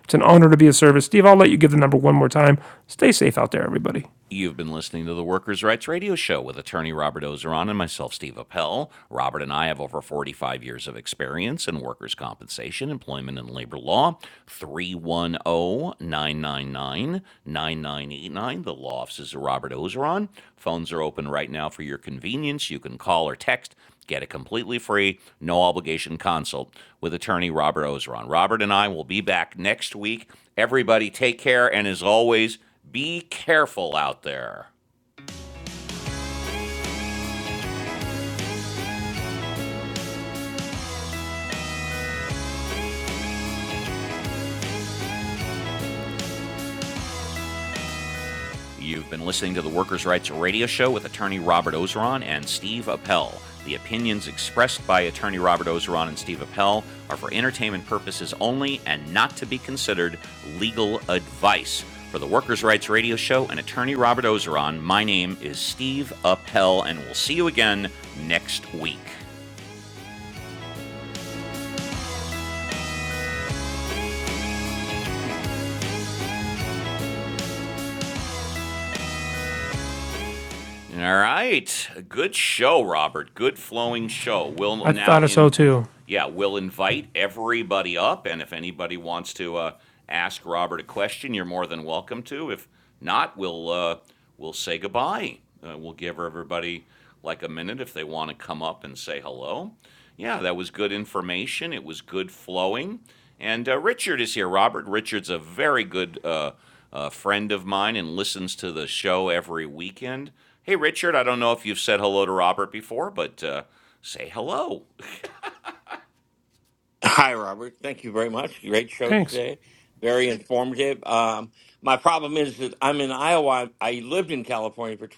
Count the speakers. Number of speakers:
3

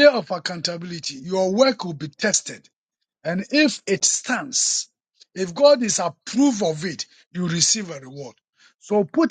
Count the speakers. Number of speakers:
1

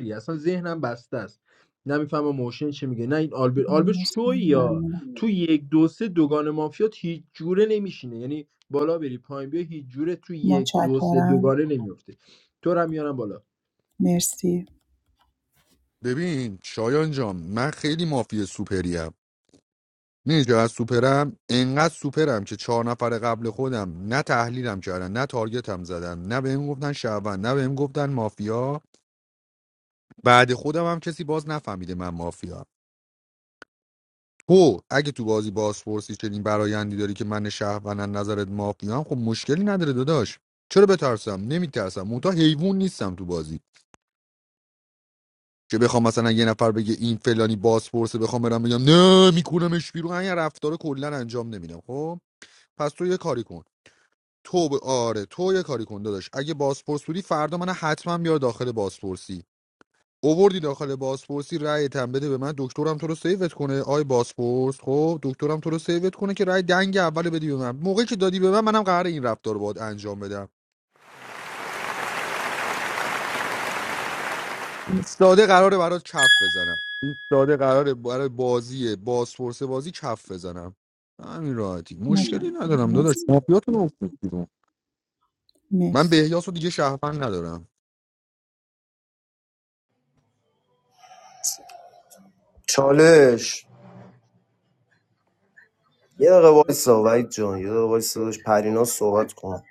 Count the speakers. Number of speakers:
4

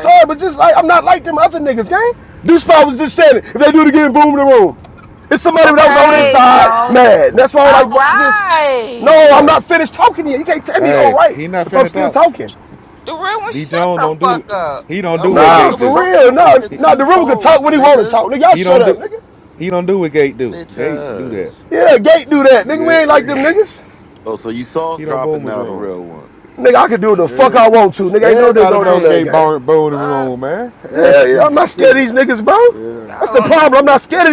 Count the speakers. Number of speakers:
4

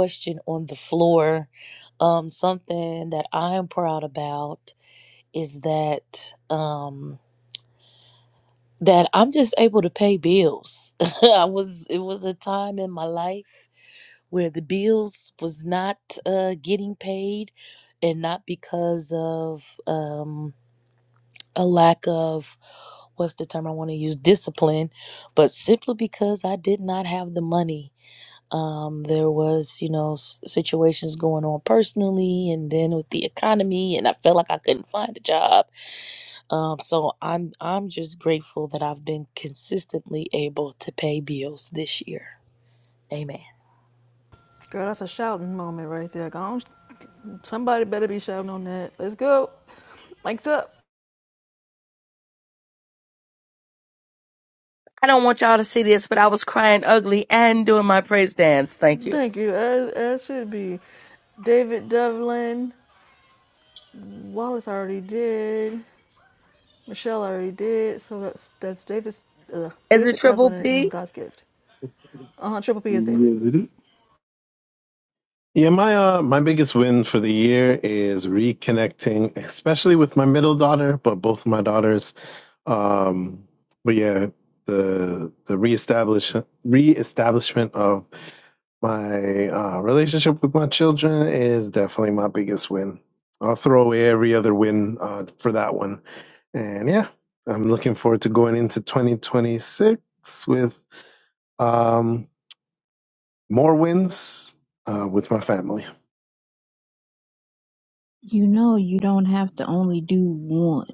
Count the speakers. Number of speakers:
5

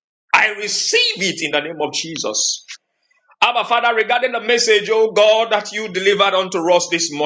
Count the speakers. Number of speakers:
1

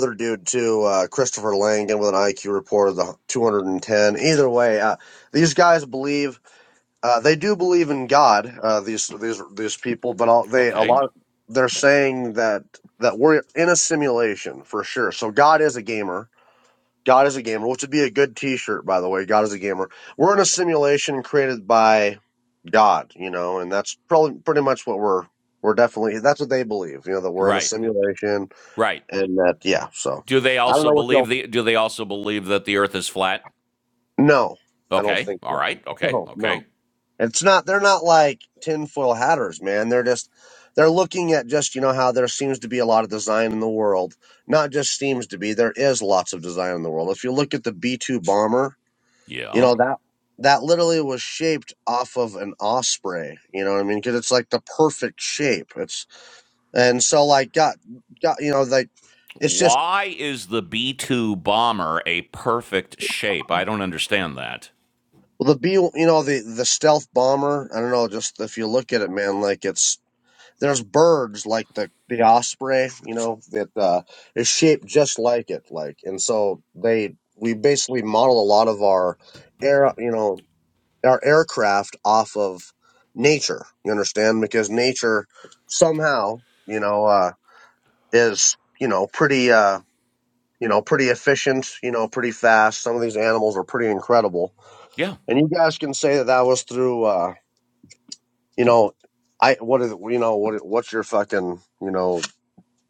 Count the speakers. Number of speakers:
2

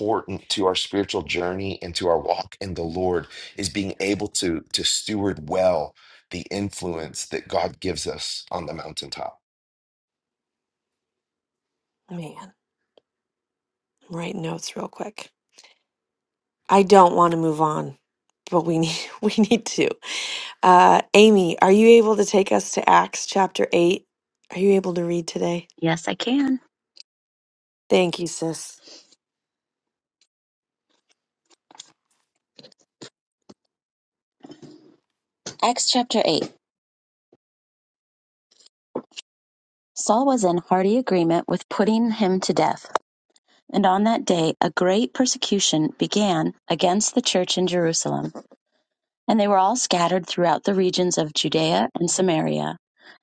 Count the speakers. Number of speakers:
3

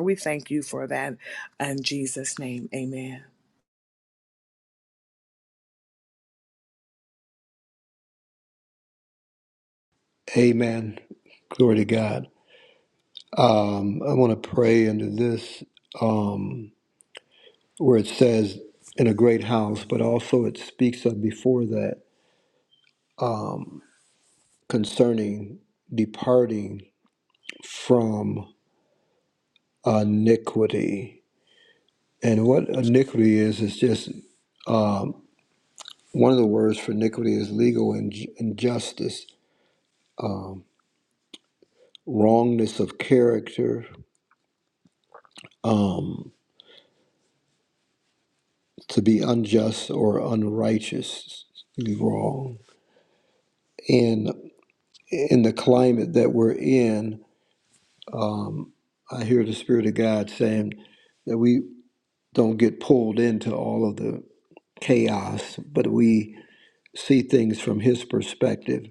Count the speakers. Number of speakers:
2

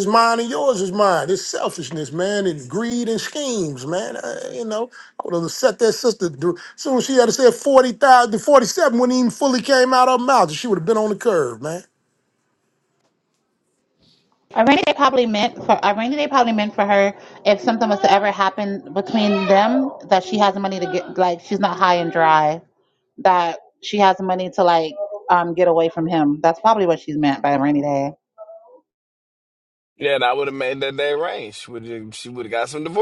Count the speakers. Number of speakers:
3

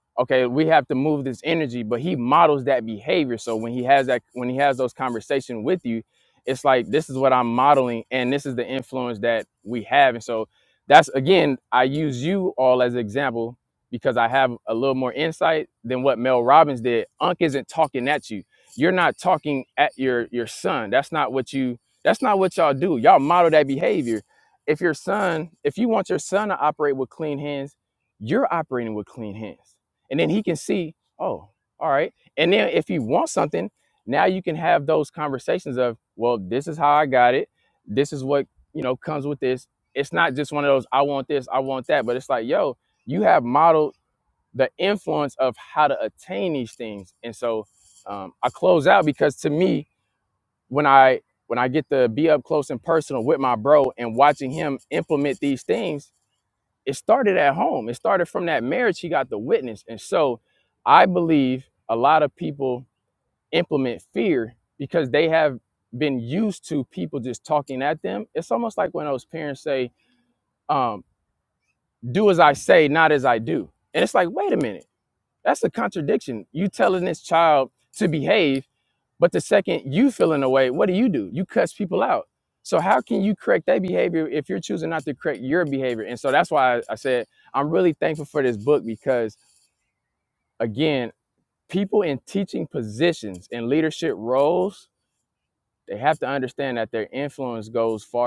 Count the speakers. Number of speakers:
1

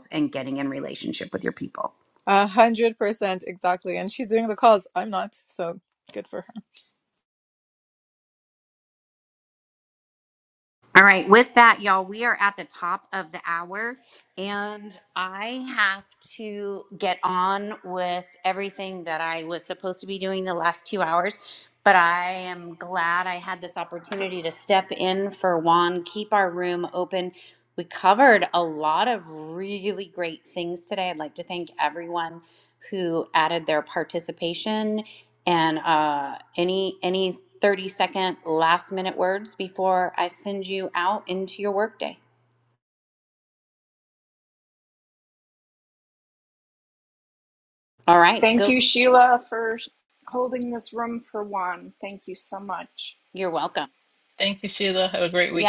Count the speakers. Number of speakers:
4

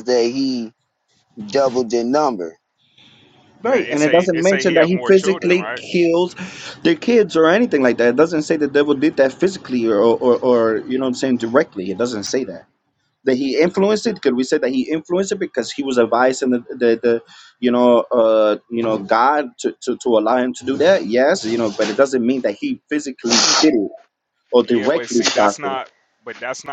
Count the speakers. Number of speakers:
3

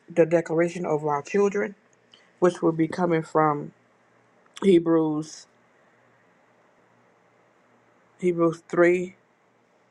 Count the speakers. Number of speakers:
1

